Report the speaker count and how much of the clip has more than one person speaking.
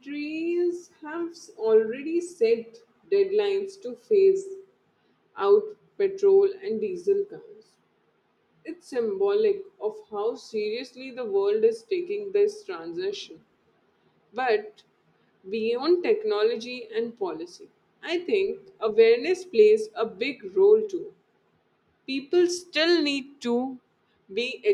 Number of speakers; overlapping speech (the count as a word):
one, no overlap